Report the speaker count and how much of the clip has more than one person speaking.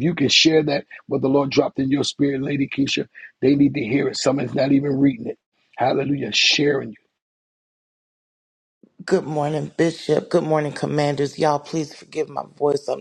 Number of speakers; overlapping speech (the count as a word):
two, no overlap